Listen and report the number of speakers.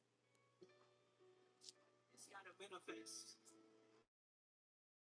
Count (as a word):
zero